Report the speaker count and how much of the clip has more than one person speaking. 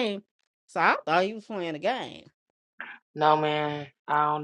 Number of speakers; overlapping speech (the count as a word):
two, no overlap